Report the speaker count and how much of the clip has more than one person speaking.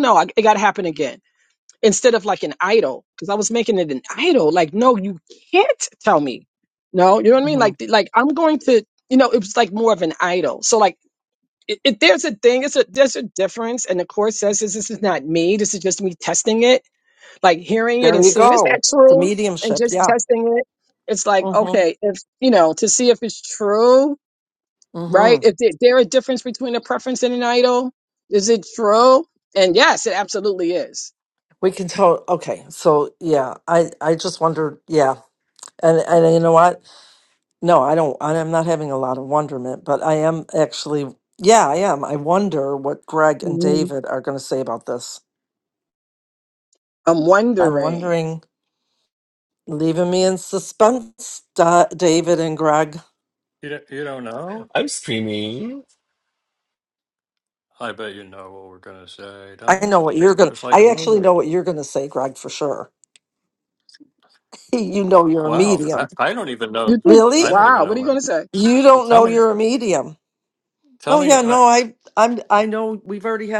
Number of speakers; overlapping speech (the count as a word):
four, about 10%